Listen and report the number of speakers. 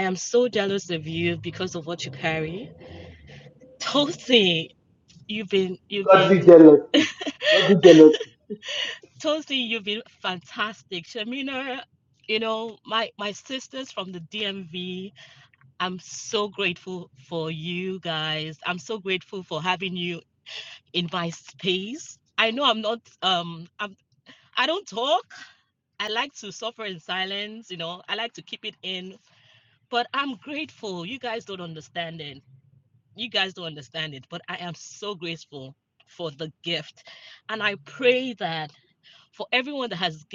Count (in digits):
2